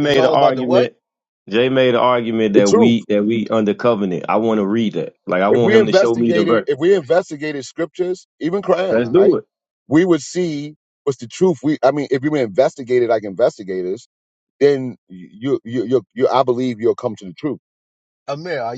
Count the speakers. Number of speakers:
three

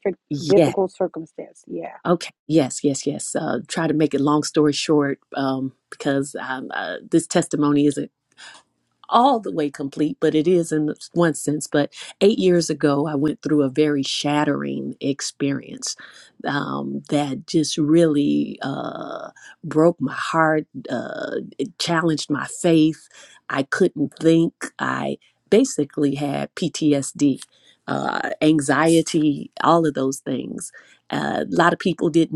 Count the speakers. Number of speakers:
two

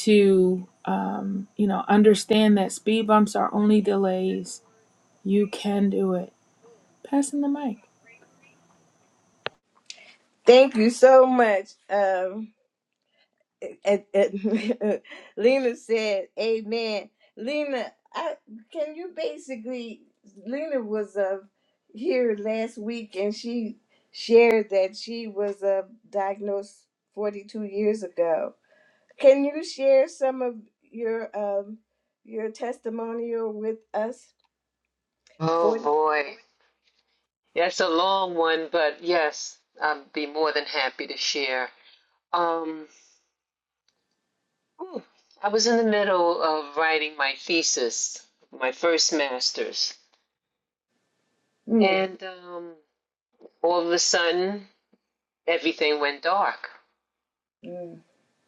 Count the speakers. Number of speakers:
three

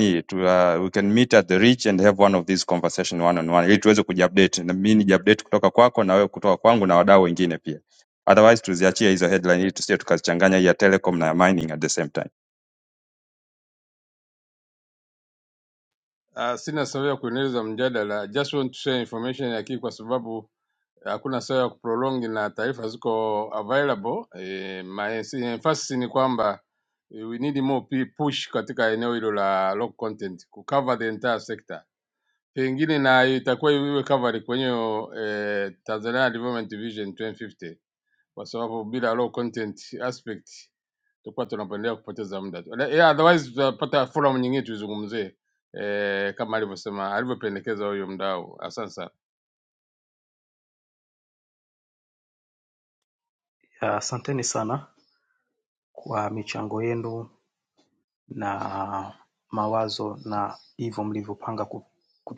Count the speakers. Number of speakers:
three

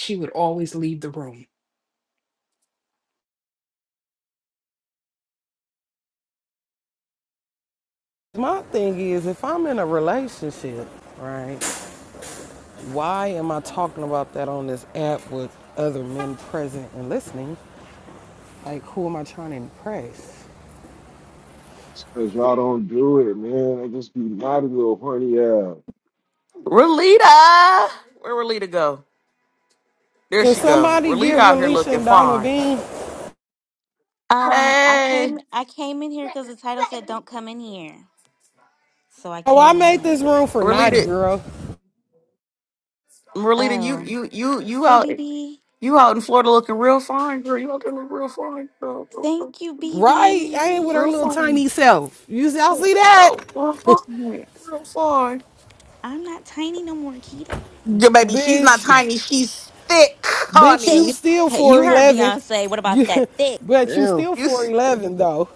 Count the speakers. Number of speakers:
five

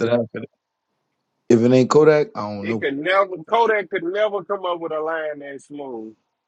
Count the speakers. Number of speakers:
two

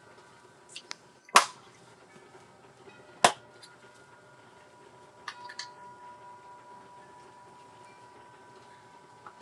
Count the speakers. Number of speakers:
zero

